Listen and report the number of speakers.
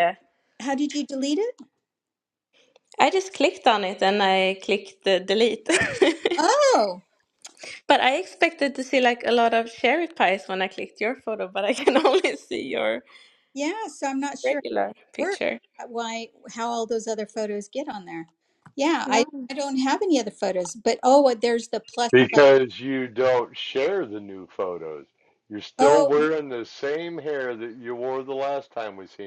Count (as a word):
three